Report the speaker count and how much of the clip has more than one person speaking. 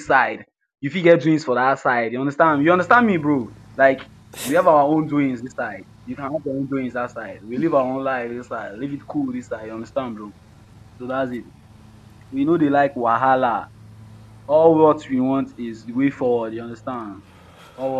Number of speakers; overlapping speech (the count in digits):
1, no overlap